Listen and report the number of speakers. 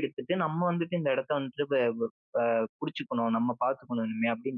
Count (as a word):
one